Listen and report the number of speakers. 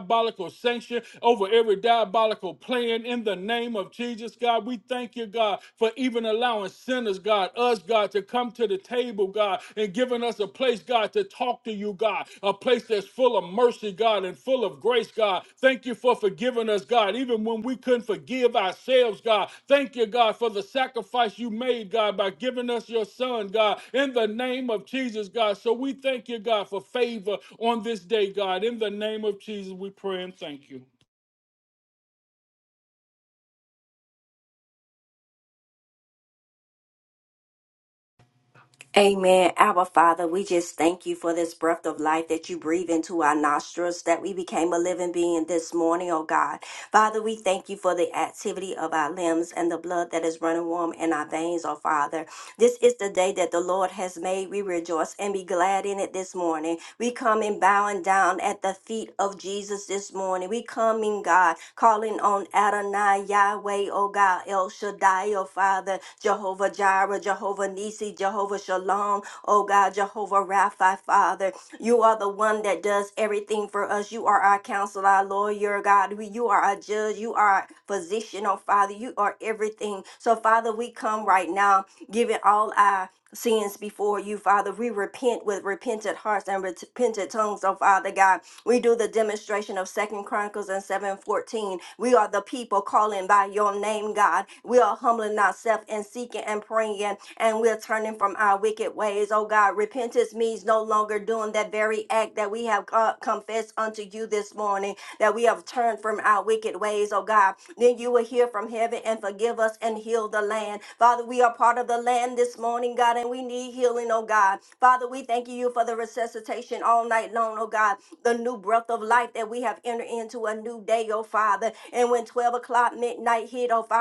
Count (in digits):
2